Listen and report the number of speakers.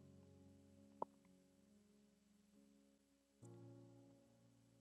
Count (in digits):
0